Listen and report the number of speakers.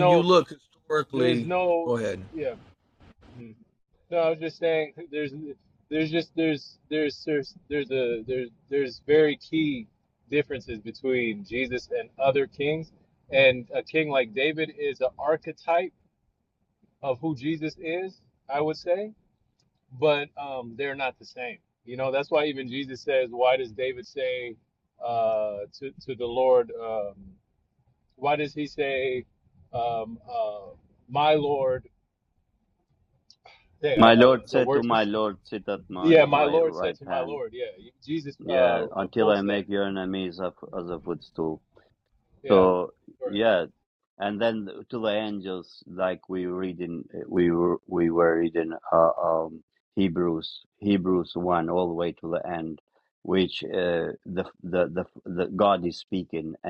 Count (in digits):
3